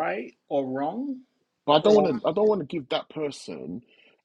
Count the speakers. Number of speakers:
two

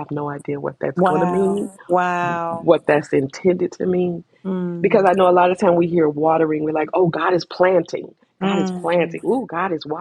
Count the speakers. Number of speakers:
two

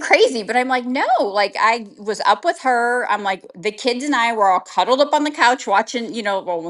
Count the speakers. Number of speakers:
one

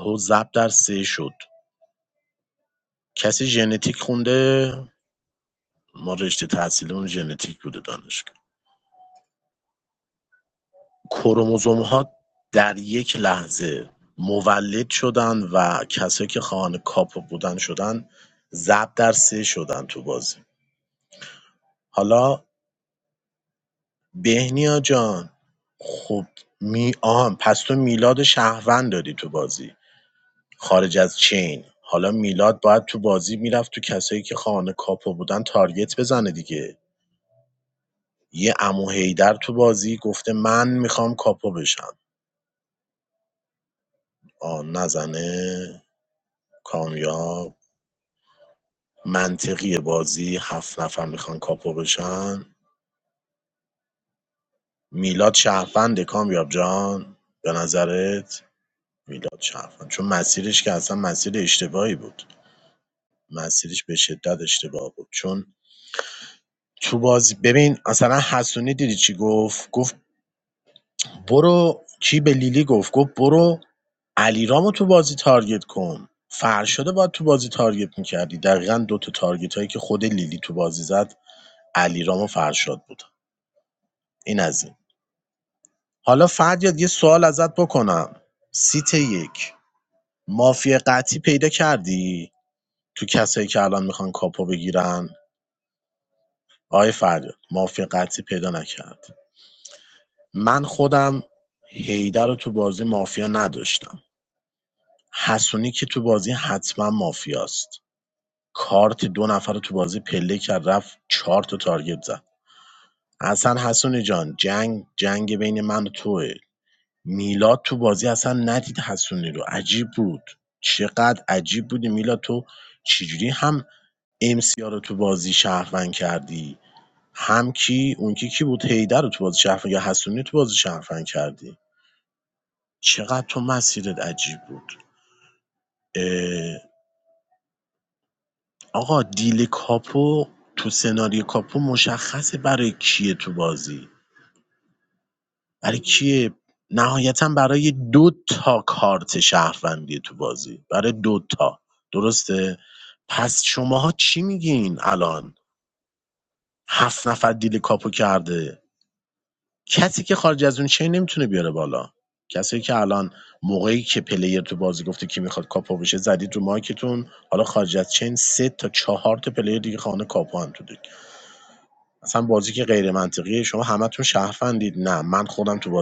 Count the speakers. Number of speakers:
one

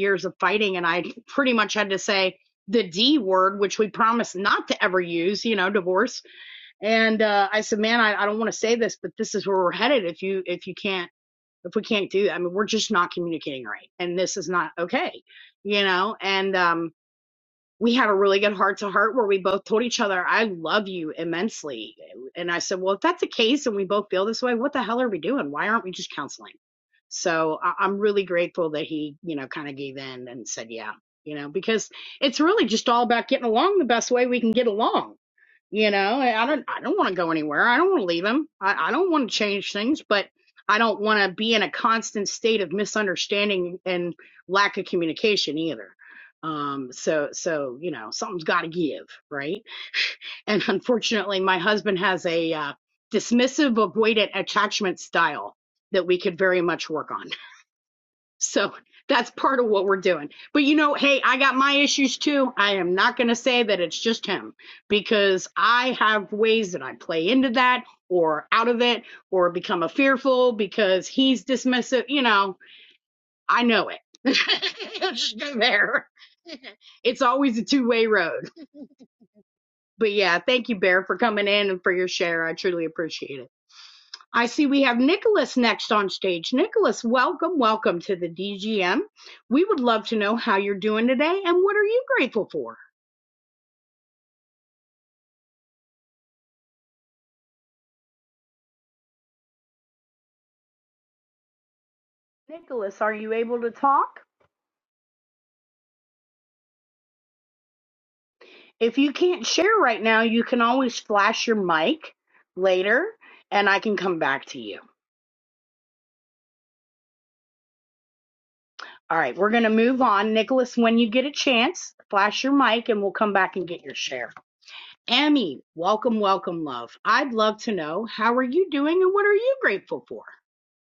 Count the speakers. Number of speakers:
one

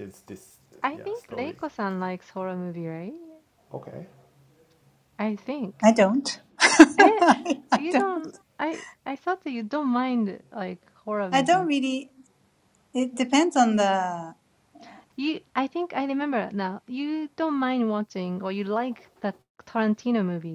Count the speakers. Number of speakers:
three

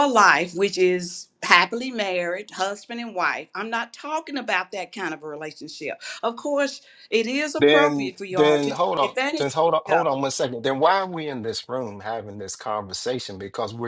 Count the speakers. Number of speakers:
two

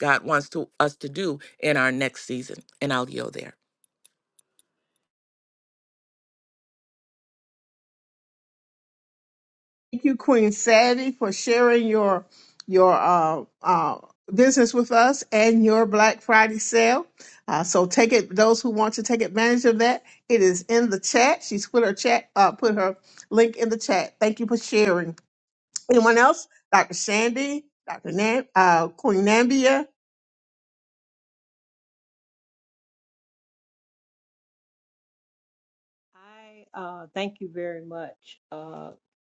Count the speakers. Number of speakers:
three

